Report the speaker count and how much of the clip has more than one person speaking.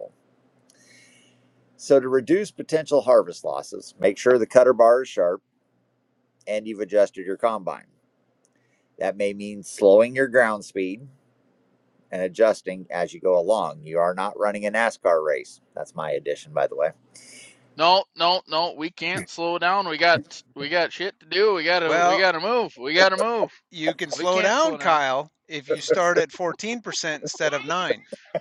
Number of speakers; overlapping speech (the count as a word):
three, about 4%